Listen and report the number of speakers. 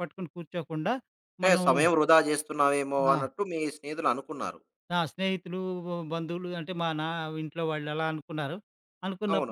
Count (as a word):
two